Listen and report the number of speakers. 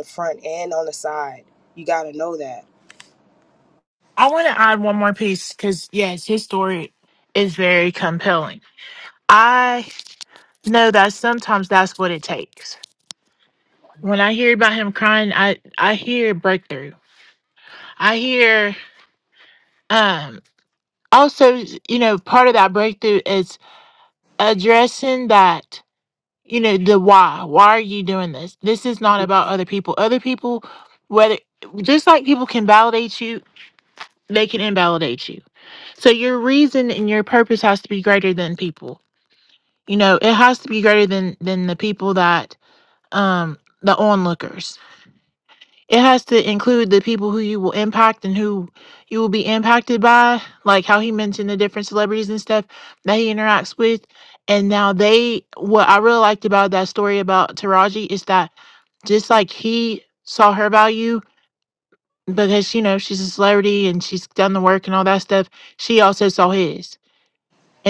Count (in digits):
2